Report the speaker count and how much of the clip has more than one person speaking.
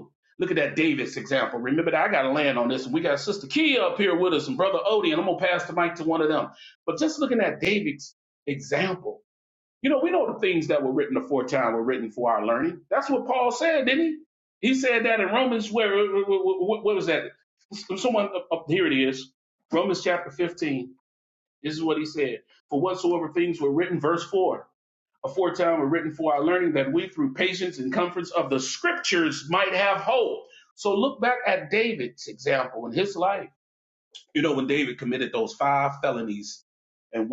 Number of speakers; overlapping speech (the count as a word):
one, no overlap